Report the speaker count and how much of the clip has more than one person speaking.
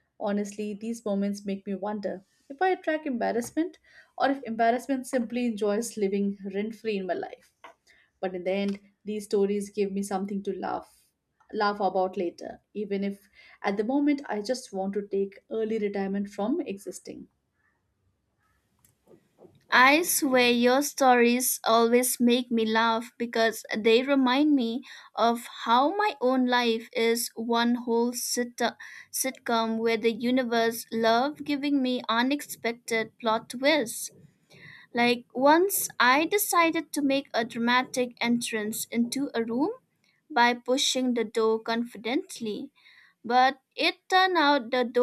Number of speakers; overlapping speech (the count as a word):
two, no overlap